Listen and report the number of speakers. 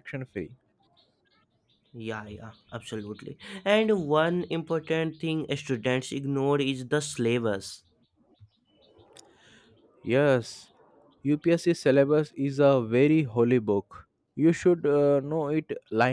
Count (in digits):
2